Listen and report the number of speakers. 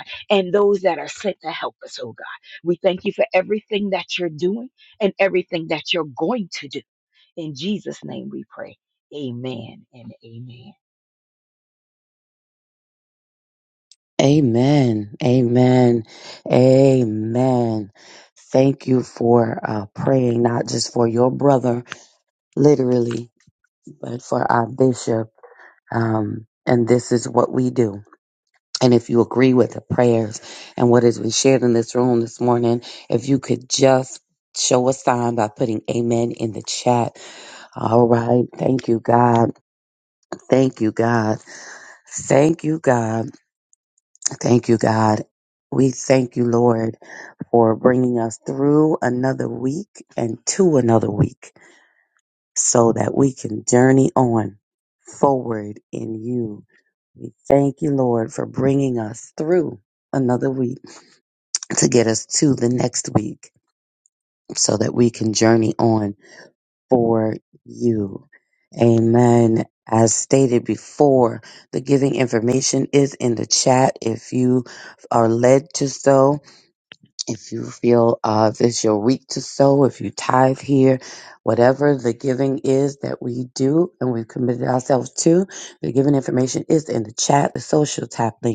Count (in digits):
2